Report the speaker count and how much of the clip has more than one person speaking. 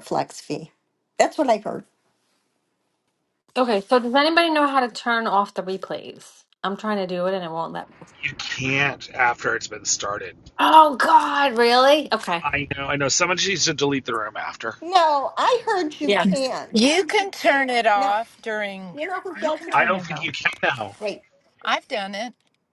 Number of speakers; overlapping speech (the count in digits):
4, about 6%